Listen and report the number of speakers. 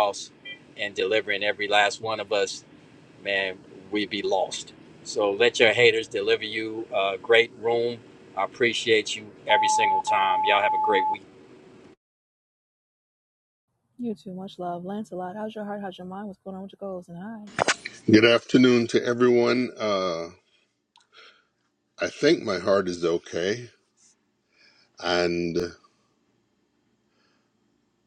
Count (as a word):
three